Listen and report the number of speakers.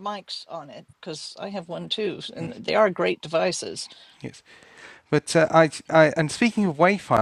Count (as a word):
two